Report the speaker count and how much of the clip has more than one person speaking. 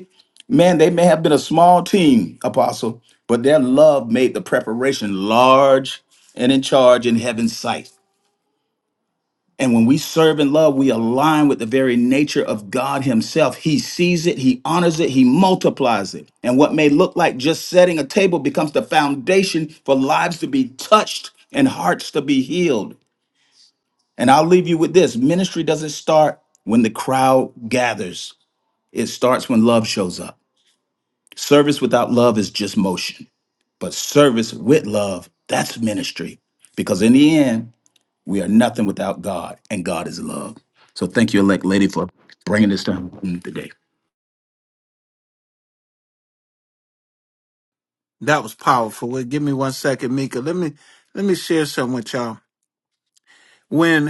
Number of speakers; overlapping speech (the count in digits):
2, no overlap